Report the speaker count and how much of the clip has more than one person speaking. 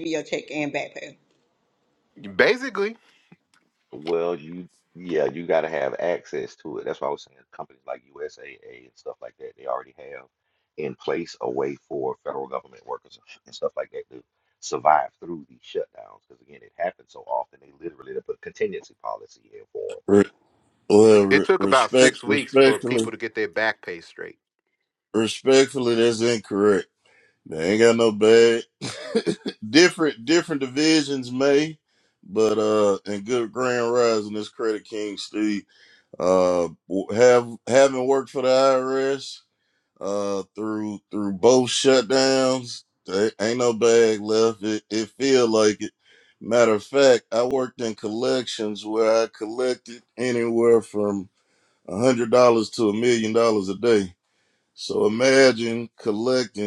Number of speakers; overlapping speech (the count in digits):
4, about 3%